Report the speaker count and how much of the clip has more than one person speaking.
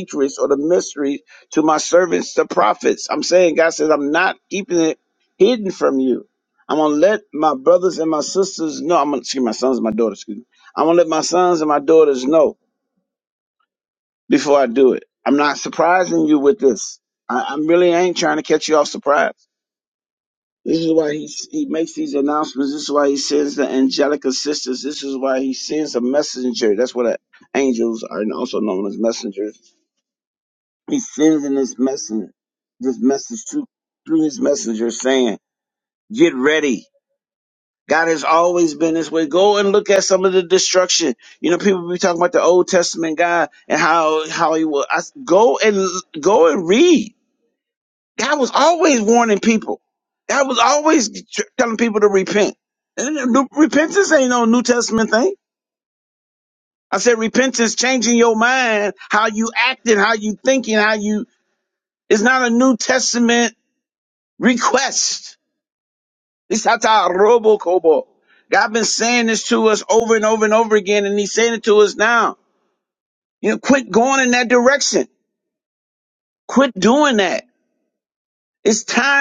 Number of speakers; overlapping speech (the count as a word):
one, no overlap